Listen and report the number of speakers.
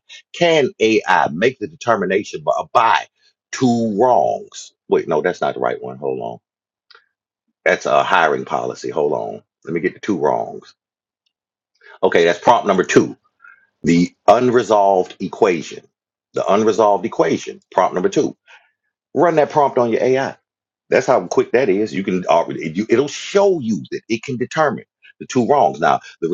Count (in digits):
1